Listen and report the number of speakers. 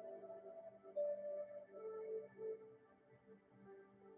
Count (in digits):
0